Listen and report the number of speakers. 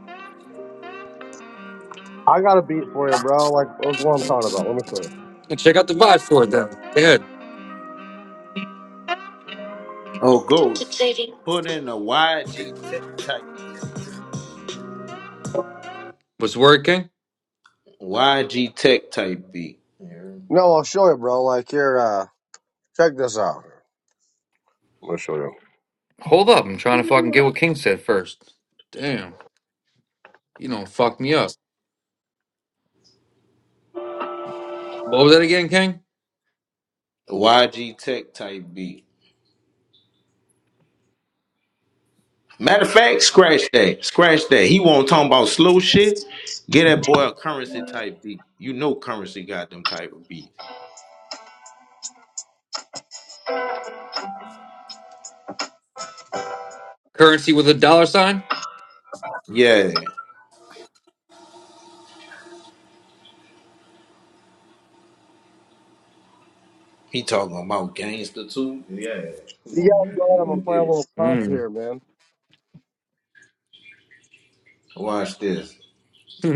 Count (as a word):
three